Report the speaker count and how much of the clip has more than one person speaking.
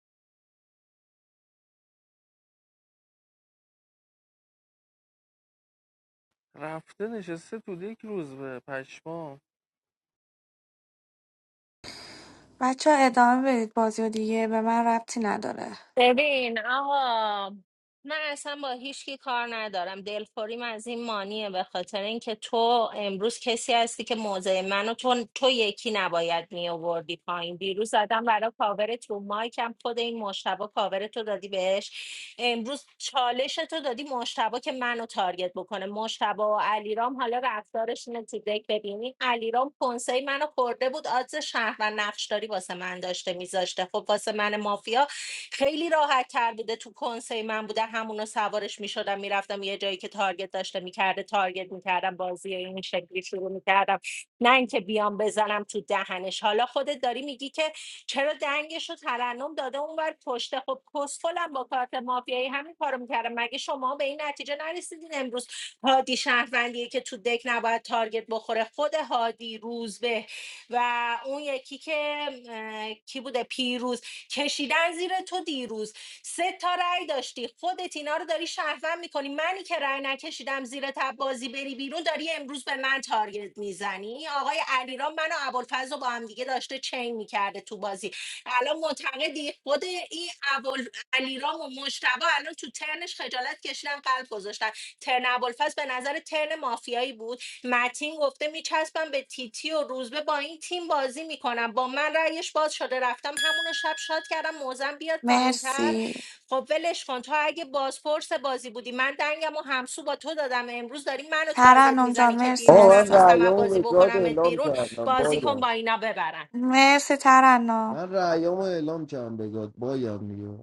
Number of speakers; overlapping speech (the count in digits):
4, about 4%